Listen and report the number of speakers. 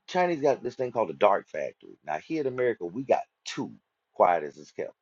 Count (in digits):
1